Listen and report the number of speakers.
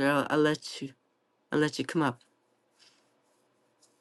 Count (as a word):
one